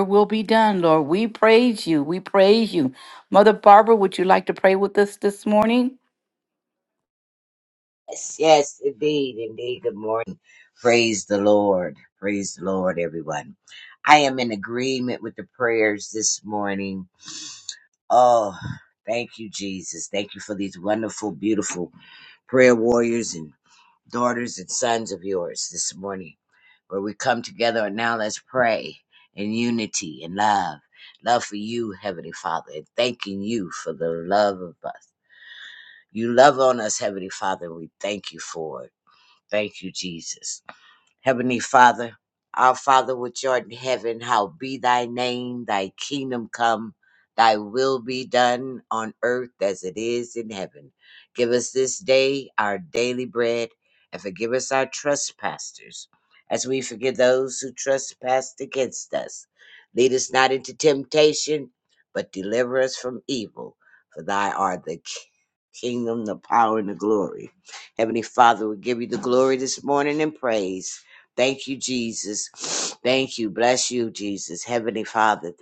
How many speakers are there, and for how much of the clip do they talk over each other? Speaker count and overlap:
2, no overlap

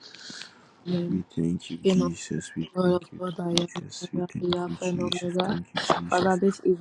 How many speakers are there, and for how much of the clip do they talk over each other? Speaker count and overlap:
2, about 55%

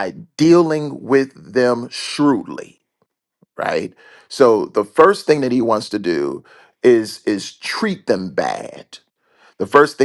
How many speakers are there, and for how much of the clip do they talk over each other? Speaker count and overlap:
1, no overlap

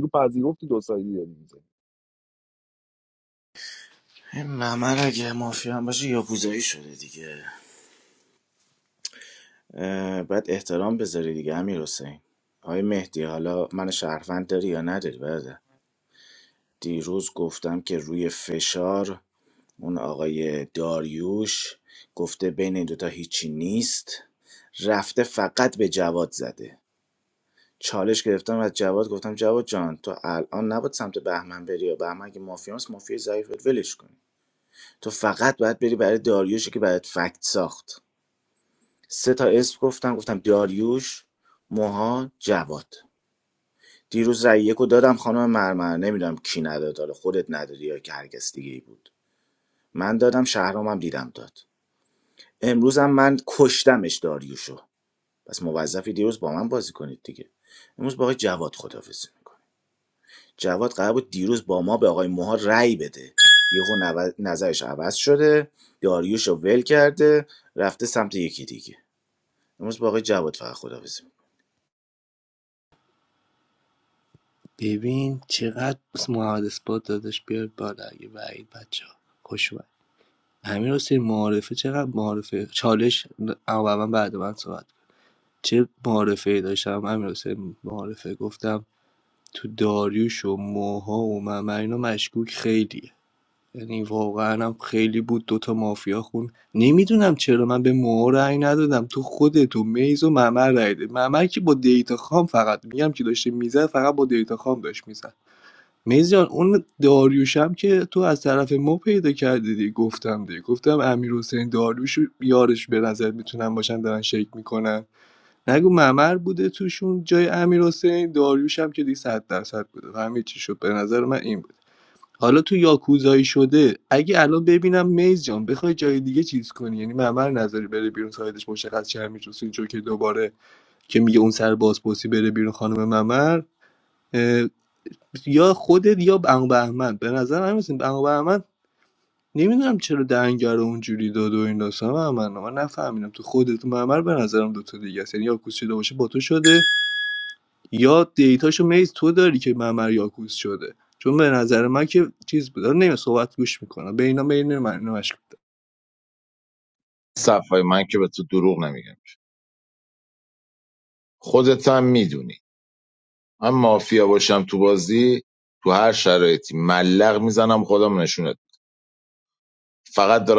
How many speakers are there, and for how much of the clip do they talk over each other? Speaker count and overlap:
4, no overlap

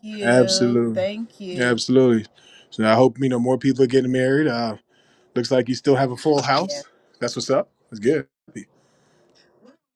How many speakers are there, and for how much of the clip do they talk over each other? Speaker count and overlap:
2, about 11%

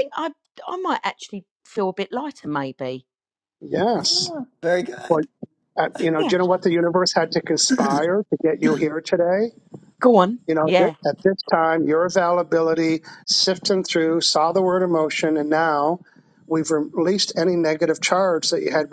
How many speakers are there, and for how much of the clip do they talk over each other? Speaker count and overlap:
3, about 6%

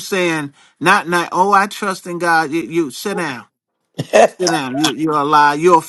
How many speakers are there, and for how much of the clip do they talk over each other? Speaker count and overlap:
1, no overlap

